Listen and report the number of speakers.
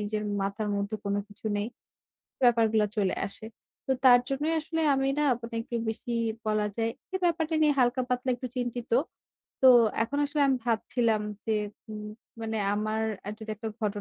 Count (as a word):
one